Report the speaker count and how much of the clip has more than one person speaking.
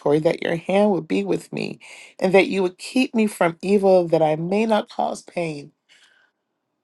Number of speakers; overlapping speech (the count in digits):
1, no overlap